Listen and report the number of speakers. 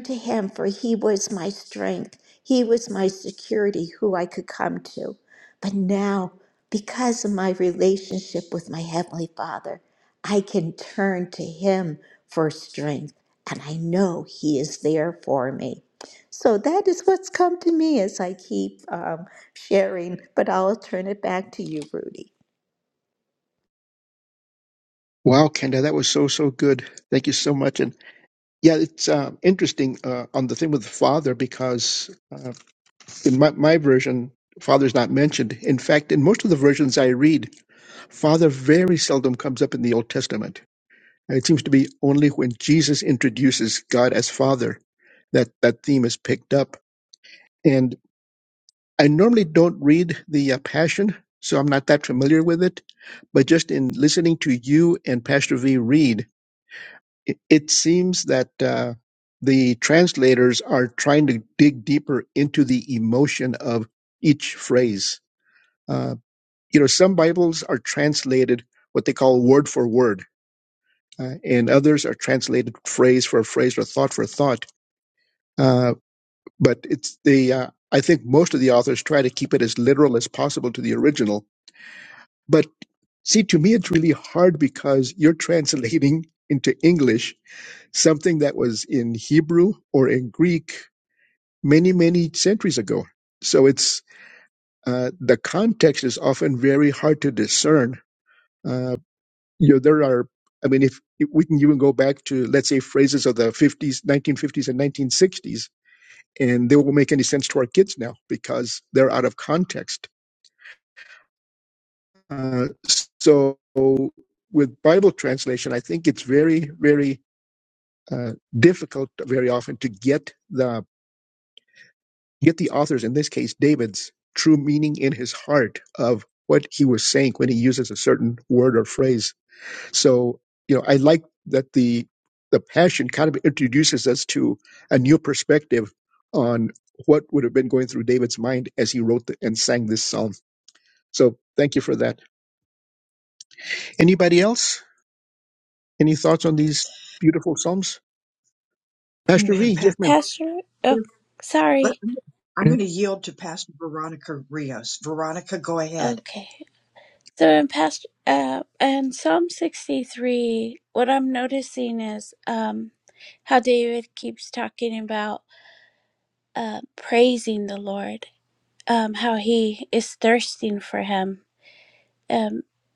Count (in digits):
4